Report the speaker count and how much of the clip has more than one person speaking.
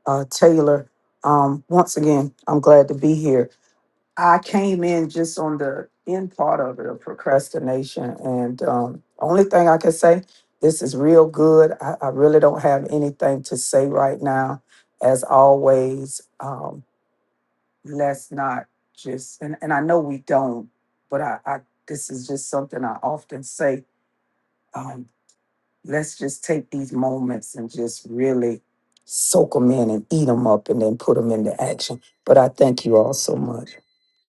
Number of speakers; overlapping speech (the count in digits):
1, no overlap